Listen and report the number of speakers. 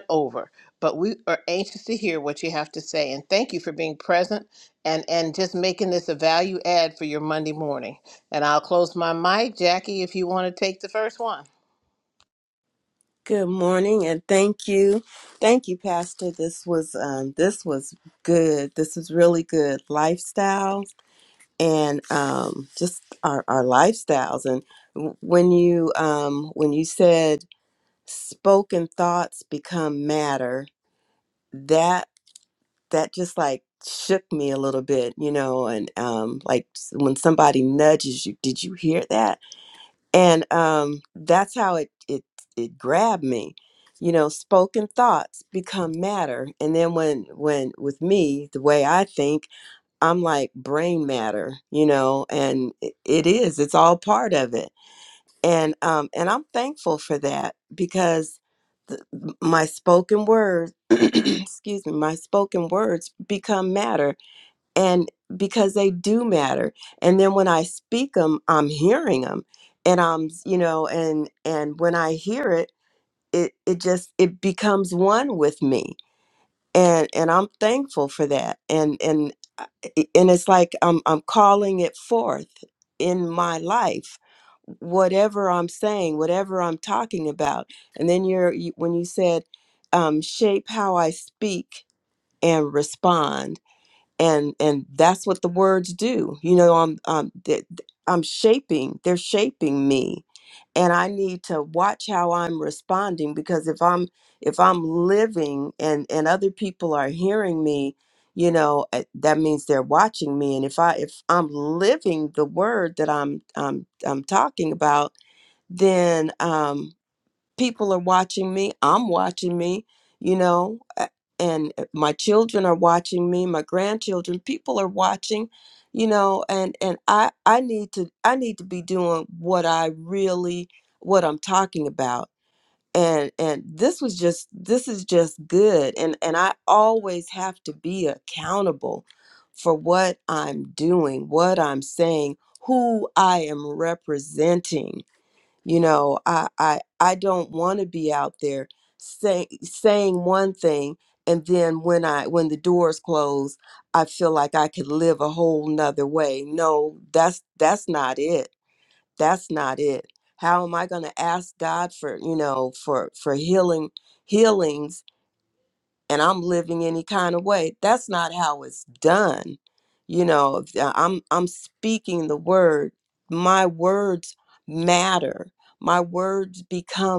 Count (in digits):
2